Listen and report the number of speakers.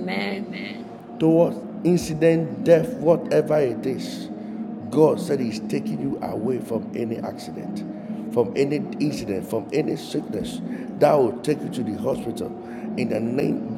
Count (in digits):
2